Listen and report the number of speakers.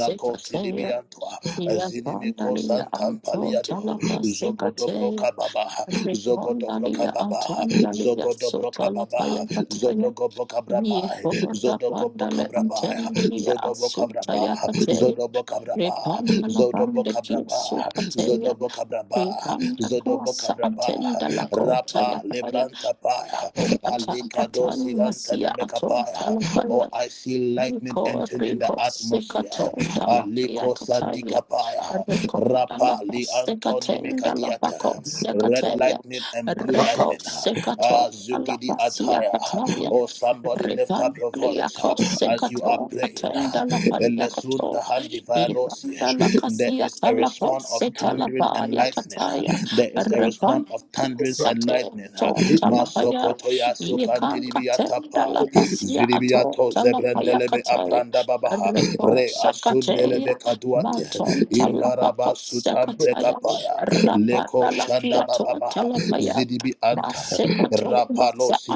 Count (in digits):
2